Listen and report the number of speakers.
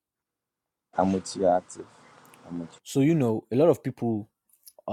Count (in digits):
2